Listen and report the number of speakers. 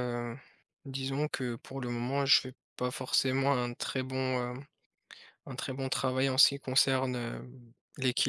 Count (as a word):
one